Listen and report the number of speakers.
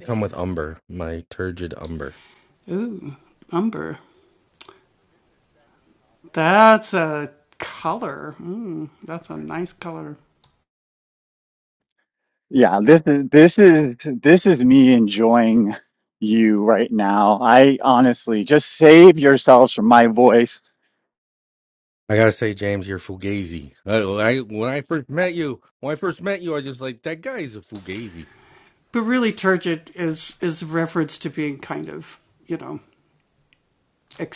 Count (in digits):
3